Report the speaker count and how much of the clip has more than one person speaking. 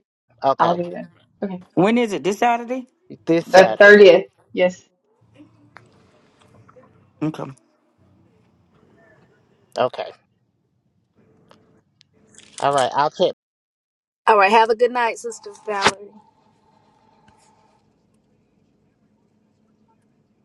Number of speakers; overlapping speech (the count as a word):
four, about 3%